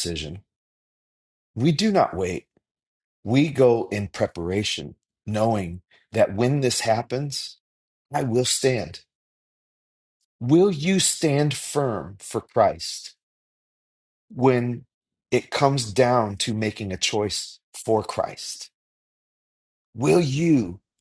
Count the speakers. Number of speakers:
one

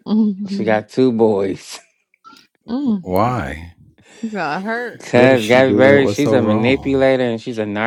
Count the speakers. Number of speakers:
three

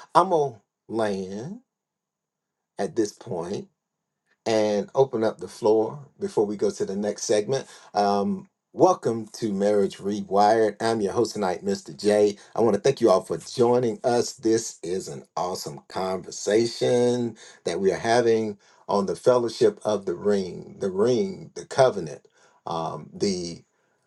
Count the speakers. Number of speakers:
one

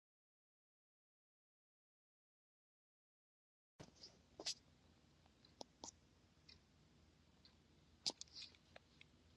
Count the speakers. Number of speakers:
zero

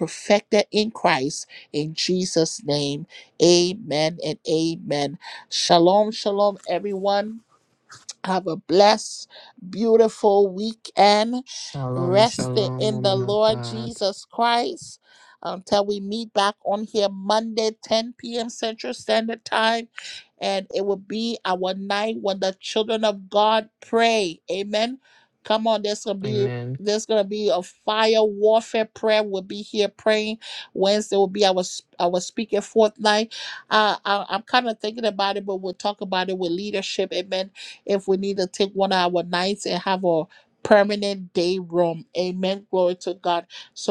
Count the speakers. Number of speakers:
two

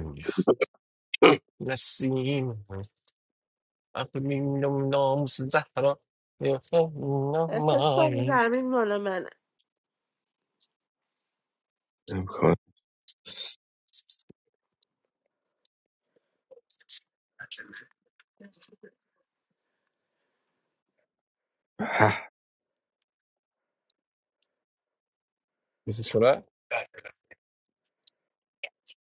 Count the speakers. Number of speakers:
three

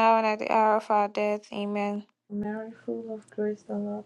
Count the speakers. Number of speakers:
two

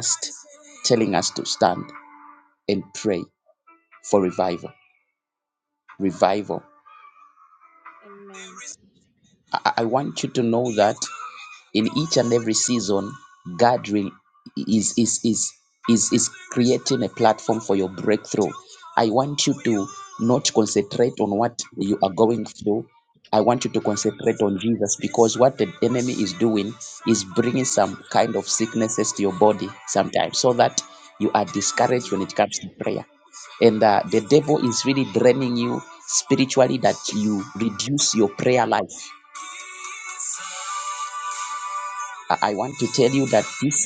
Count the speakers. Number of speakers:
two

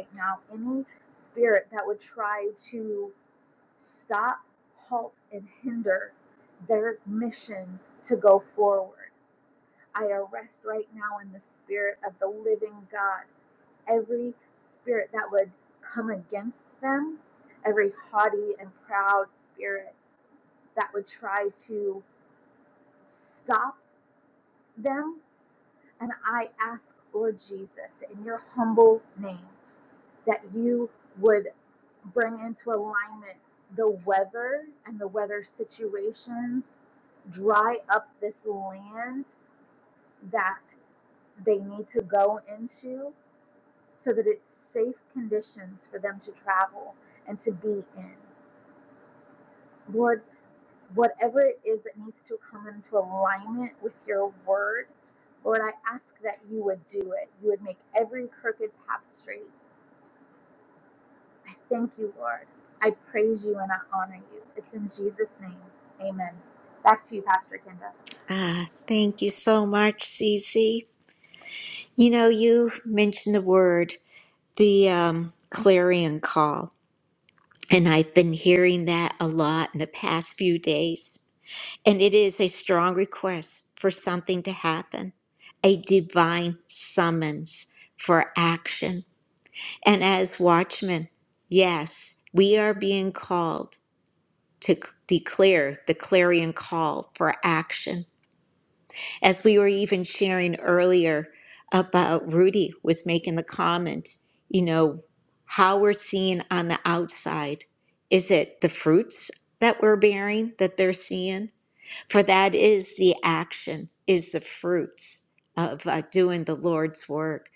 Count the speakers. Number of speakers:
two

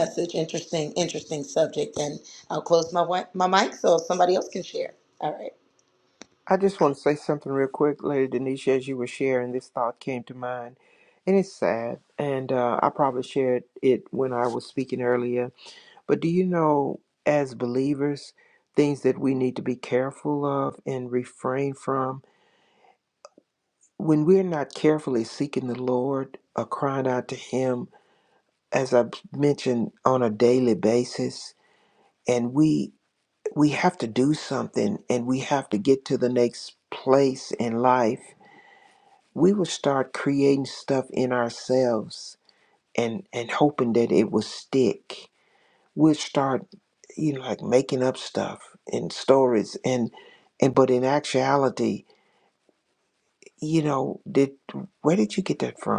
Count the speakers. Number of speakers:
two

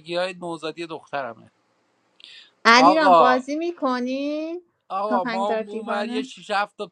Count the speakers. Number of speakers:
two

